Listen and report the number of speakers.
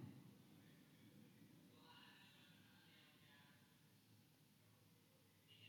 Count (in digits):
0